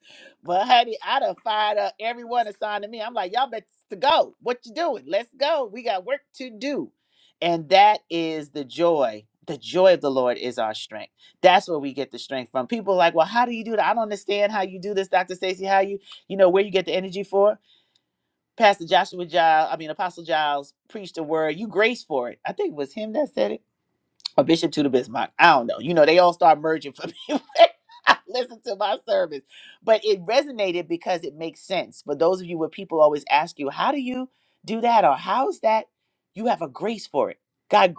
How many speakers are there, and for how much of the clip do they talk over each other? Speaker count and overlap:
one, no overlap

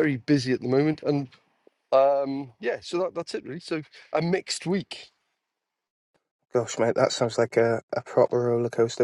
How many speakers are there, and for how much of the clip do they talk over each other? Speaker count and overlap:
two, no overlap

